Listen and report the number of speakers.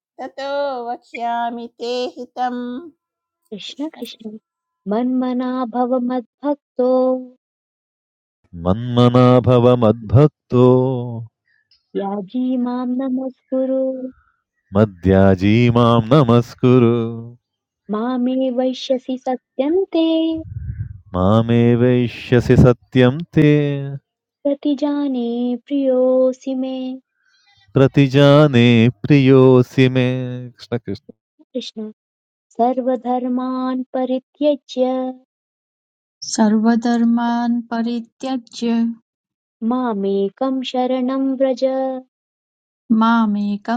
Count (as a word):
four